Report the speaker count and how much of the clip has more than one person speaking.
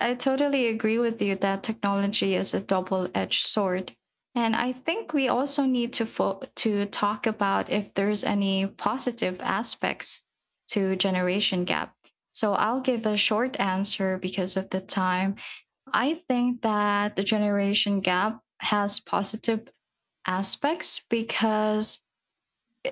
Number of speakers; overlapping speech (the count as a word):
one, no overlap